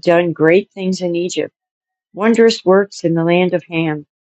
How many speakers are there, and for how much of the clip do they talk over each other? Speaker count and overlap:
1, no overlap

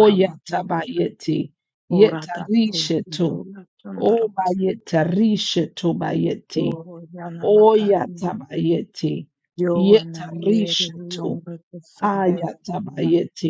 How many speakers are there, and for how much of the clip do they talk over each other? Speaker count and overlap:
2, about 44%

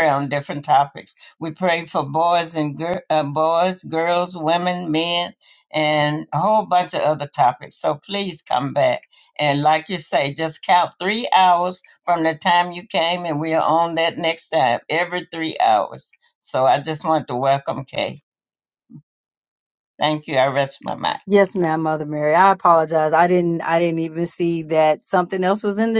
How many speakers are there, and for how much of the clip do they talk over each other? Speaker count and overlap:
2, no overlap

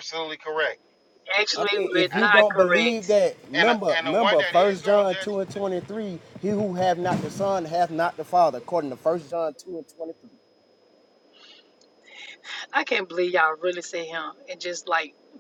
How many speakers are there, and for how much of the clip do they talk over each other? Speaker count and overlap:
3, about 20%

